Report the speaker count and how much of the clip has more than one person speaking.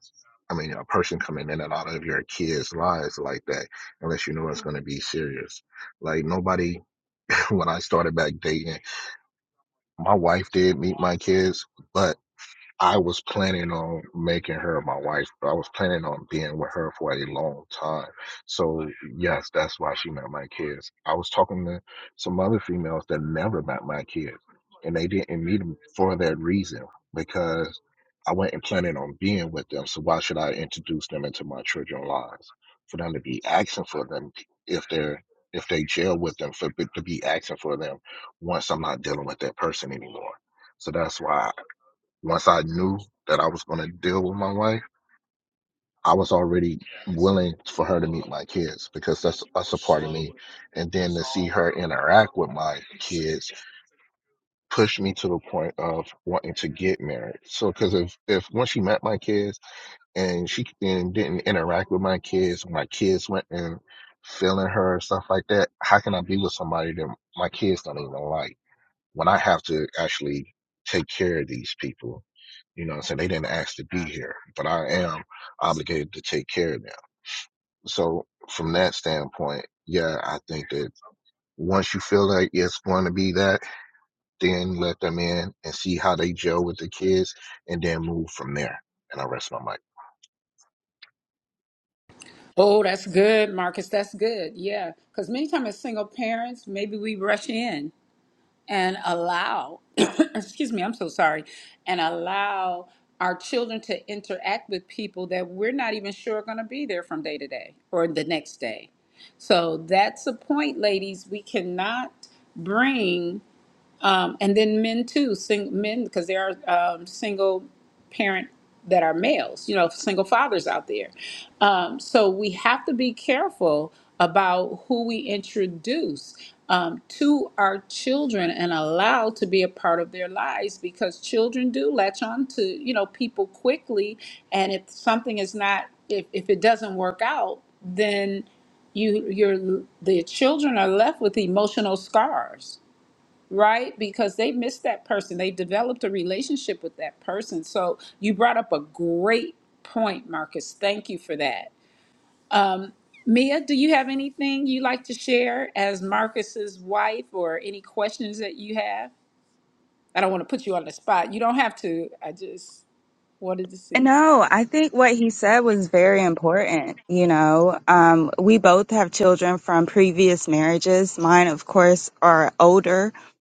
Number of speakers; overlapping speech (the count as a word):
three, under 1%